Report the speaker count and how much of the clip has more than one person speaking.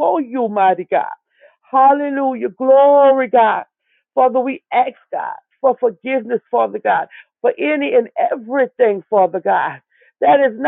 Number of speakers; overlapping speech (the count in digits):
1, no overlap